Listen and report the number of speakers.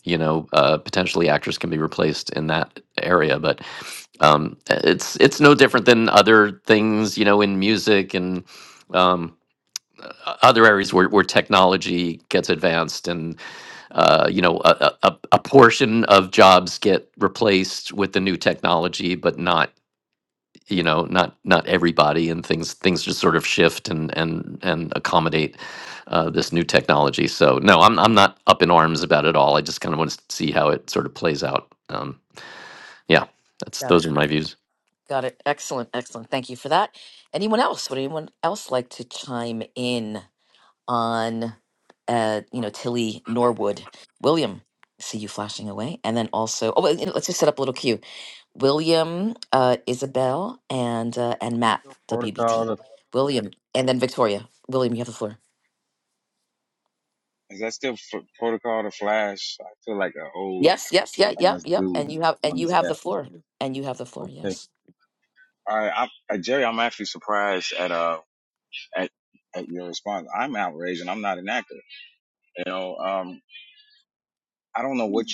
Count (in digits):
3